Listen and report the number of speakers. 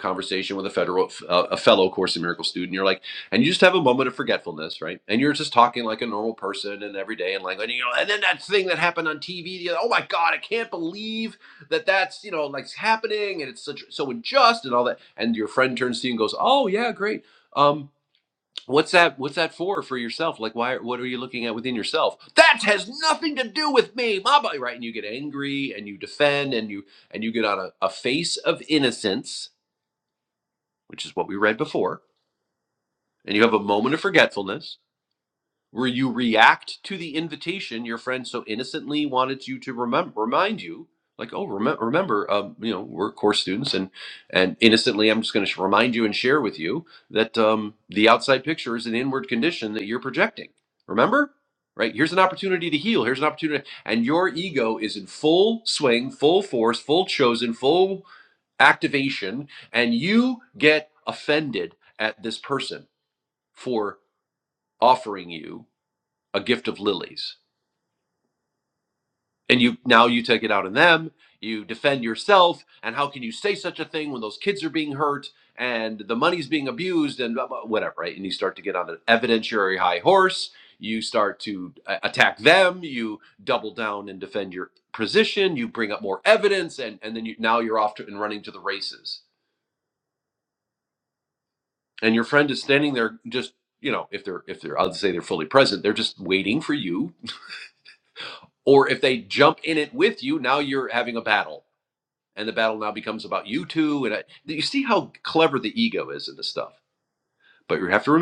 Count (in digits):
1